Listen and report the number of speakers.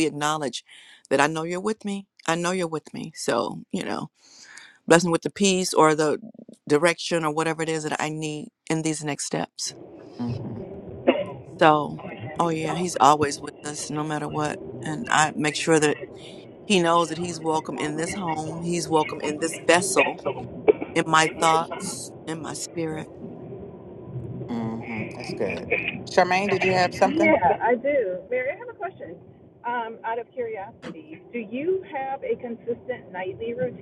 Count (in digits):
3